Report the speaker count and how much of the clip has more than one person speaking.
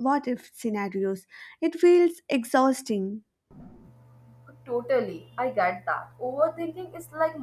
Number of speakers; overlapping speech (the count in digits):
2, no overlap